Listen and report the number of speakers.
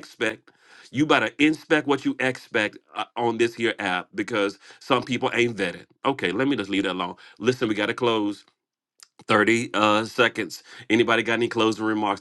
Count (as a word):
one